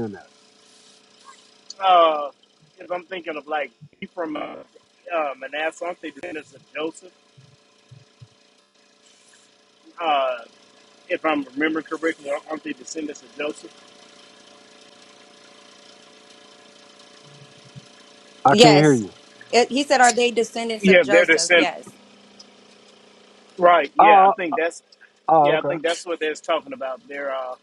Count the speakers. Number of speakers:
3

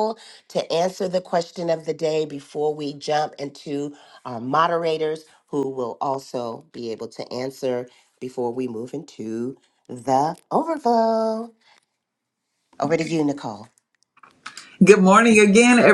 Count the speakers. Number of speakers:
2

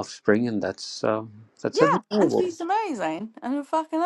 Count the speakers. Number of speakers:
2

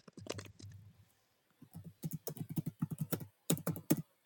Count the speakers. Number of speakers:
0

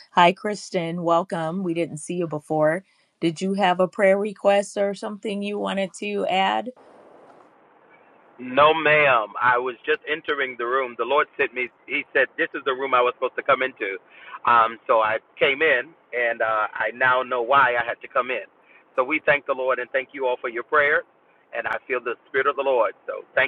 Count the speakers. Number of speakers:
2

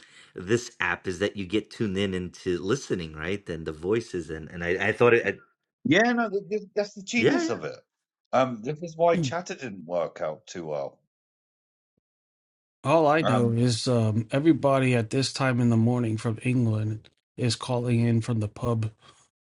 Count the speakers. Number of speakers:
3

